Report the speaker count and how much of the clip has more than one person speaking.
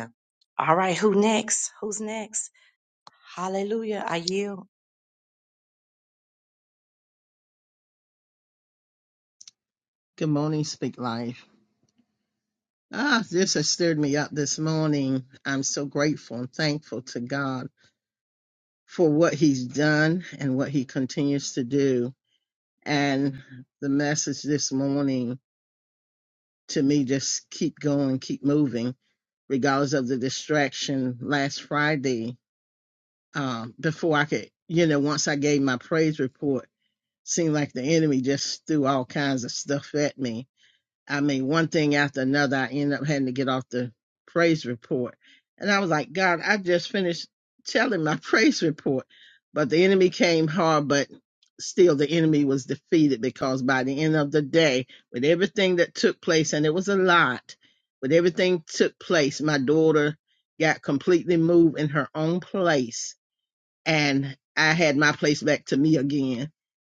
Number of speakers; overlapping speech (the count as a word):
two, no overlap